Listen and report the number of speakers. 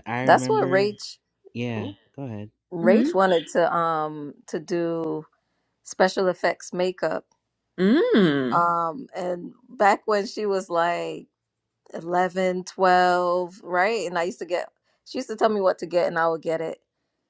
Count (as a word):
three